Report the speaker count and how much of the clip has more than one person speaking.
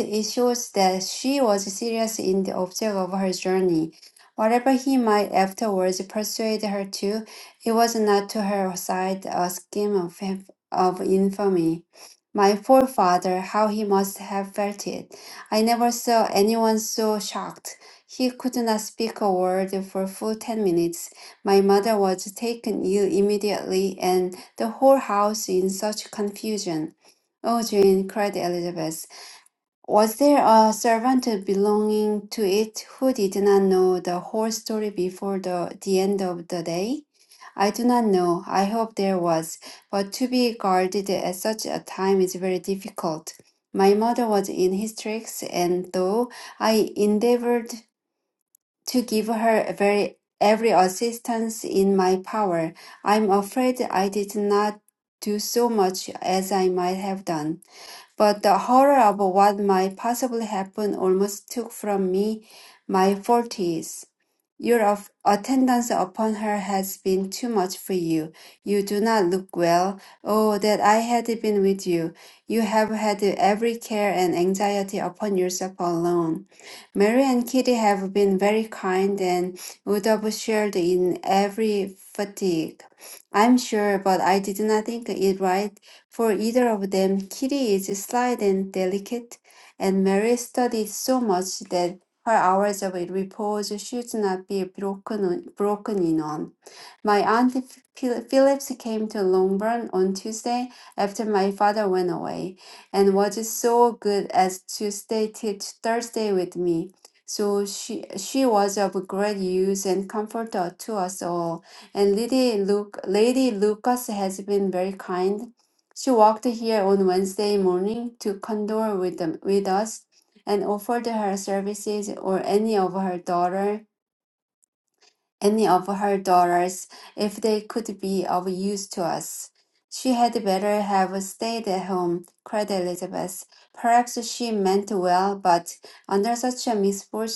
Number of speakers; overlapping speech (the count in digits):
1, no overlap